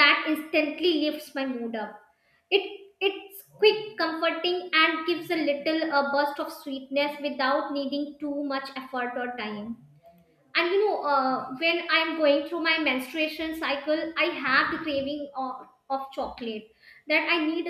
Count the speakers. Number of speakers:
one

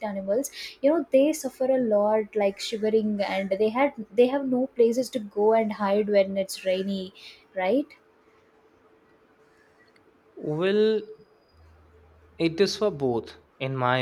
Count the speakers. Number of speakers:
two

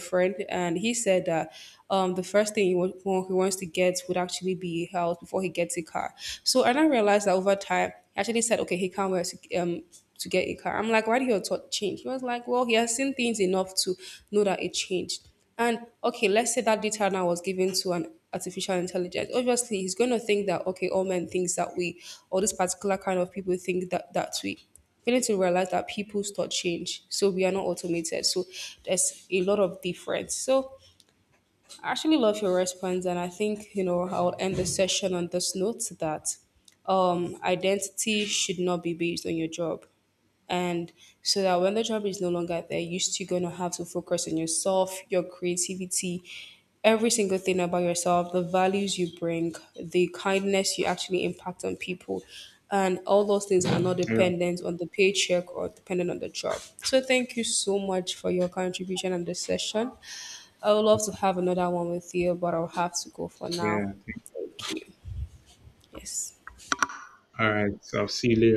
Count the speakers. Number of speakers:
two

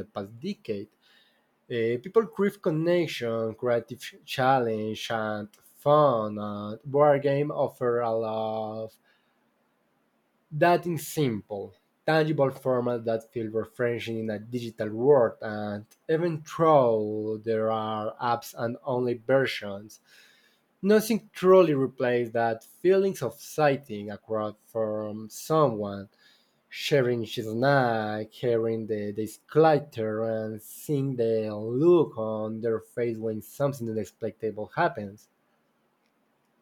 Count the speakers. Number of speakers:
one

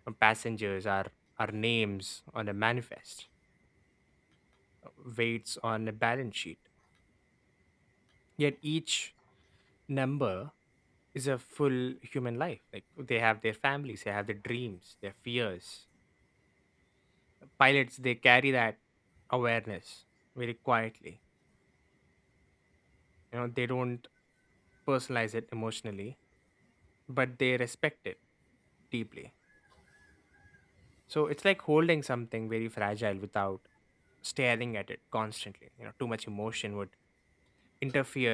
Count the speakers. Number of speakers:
one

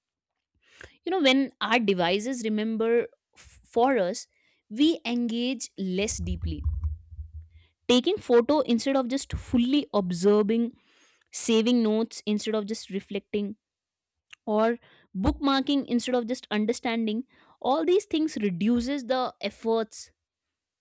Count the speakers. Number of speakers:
one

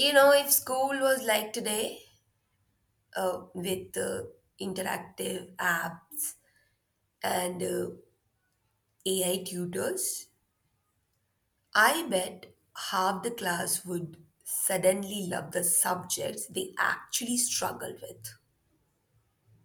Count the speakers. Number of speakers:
one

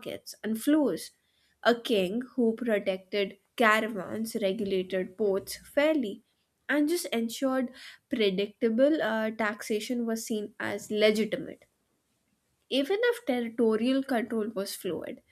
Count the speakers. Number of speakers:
one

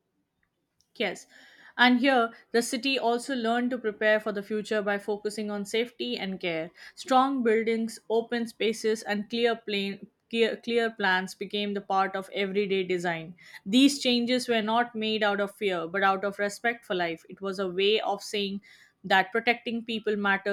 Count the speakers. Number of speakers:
one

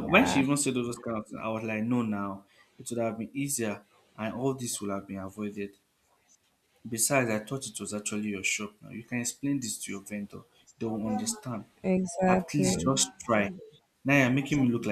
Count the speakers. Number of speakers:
two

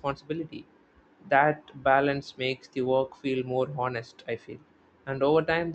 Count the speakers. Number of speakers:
one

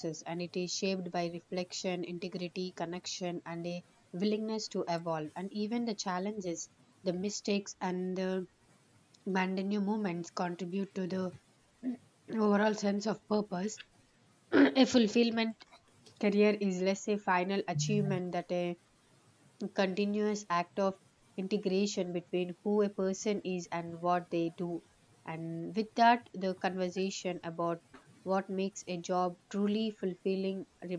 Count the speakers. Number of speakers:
one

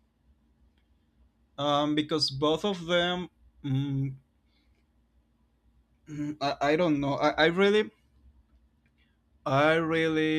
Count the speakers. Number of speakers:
one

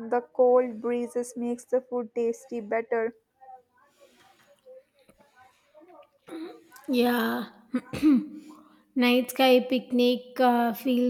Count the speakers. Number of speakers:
two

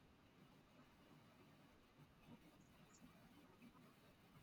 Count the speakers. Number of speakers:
zero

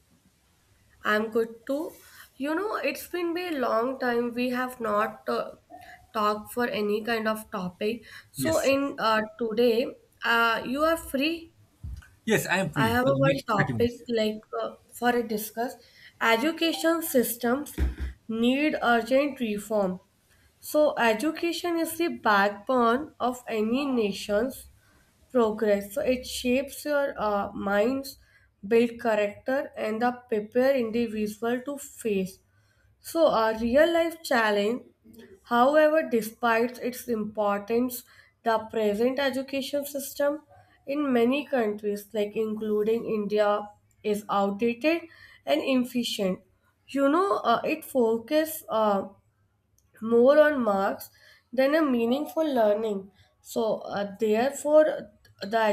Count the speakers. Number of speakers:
two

